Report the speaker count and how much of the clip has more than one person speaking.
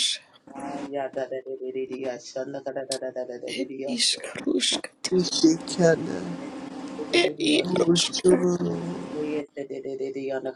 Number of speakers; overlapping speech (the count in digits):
3, about 12%